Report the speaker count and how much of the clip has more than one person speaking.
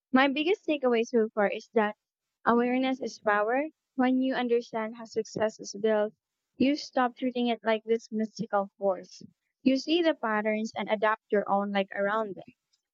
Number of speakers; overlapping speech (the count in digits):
1, no overlap